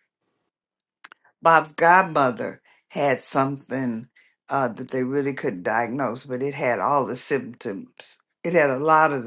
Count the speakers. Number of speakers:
1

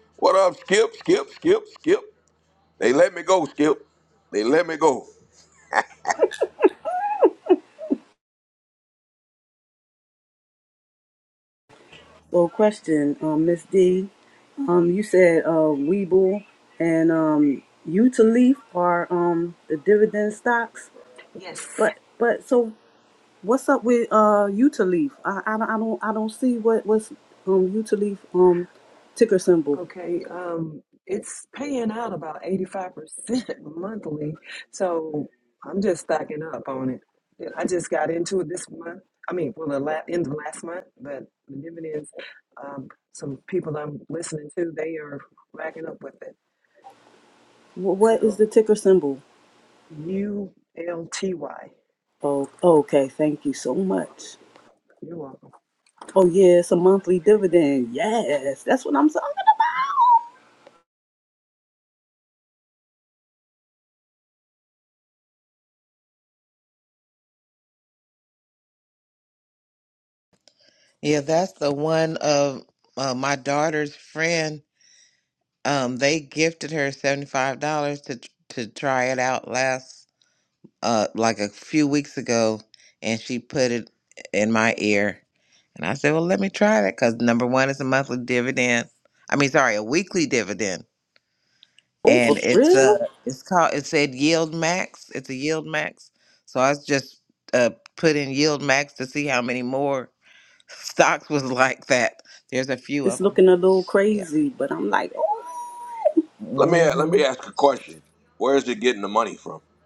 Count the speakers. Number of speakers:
4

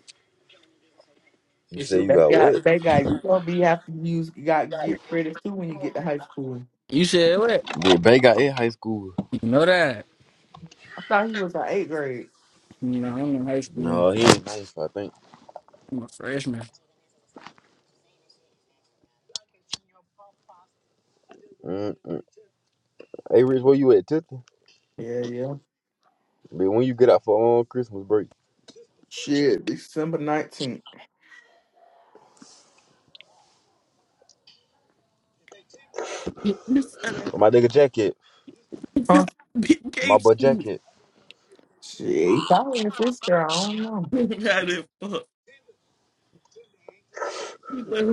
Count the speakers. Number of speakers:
3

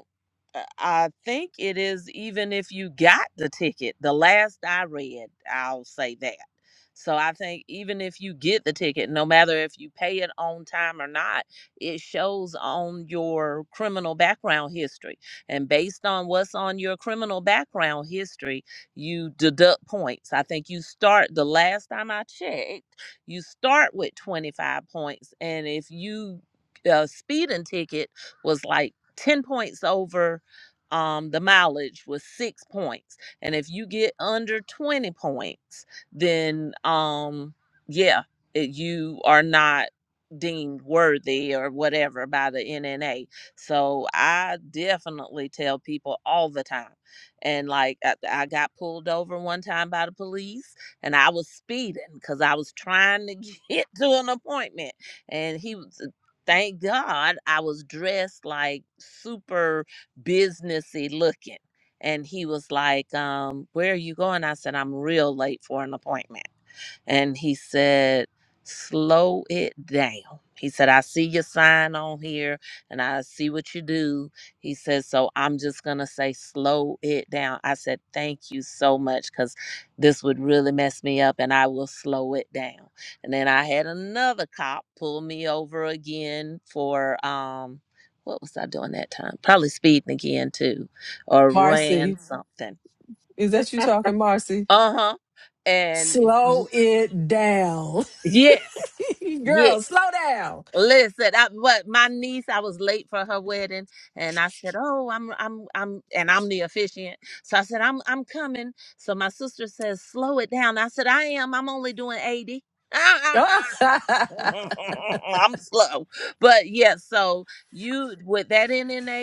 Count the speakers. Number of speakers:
2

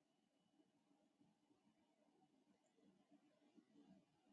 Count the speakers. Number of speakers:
0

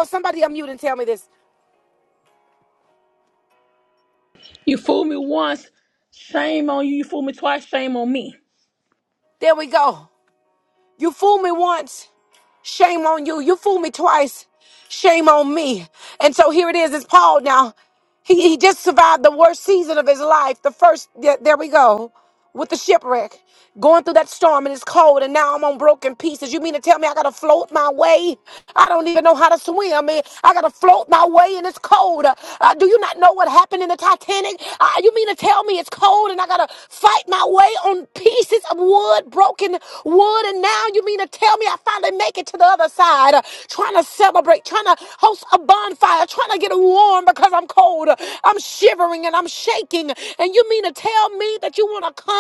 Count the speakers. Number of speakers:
2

